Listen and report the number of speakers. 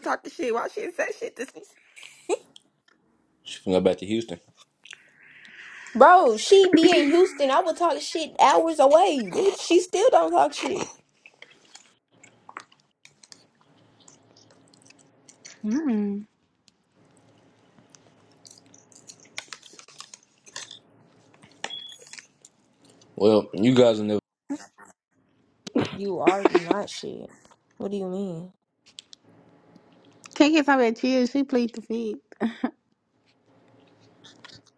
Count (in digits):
4